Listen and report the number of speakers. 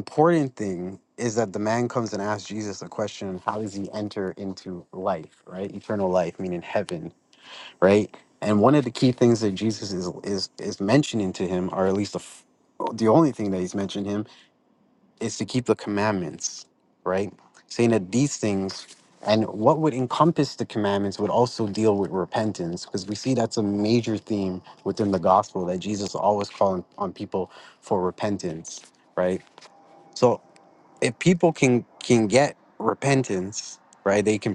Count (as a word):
one